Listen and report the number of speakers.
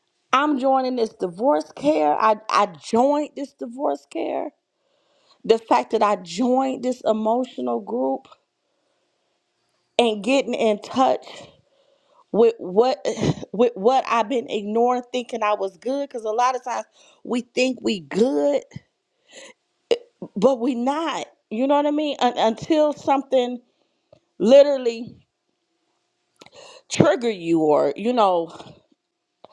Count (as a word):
one